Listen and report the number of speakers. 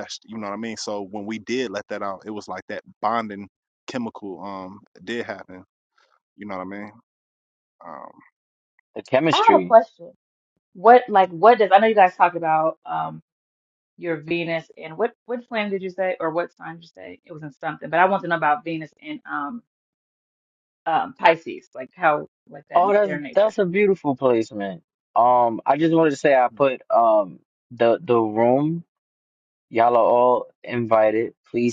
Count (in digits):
3